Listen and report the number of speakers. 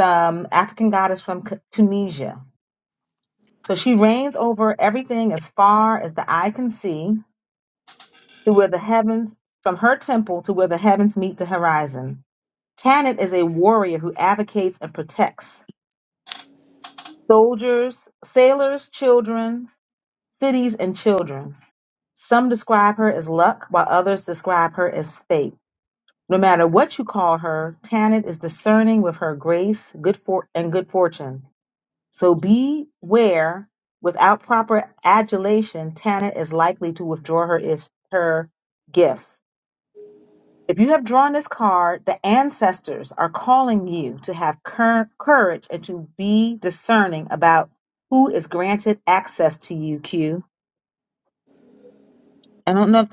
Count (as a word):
one